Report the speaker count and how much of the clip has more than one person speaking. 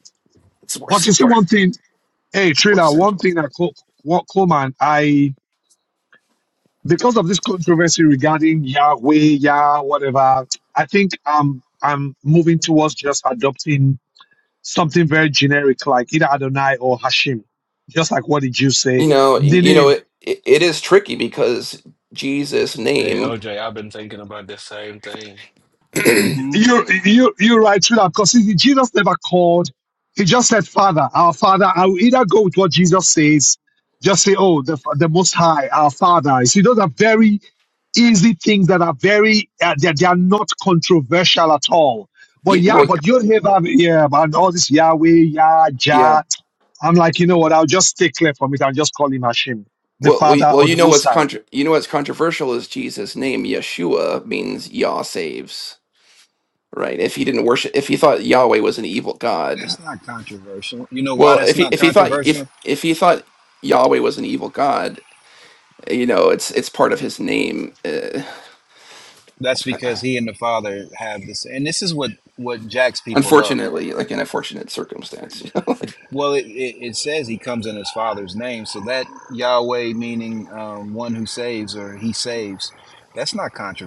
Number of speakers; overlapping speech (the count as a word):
four, about 8%